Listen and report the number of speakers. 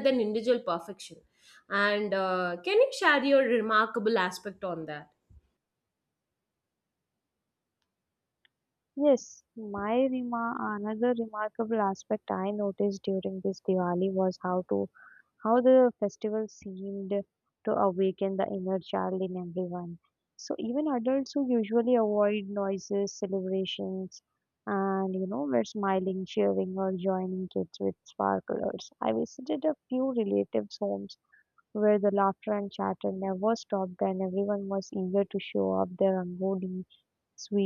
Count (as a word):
two